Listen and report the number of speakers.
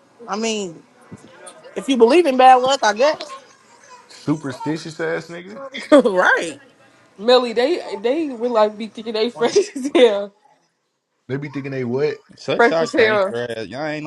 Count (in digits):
4